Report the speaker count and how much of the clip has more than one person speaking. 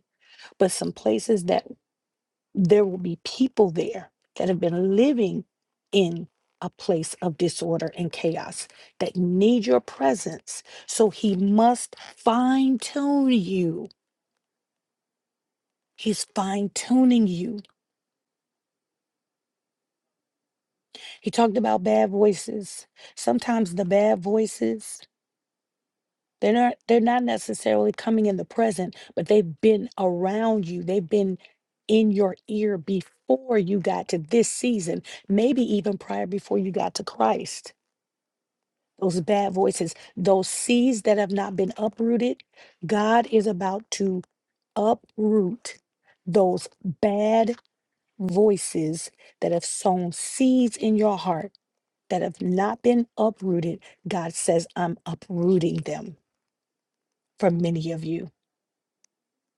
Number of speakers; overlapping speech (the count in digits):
1, no overlap